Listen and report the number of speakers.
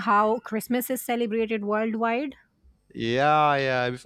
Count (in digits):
2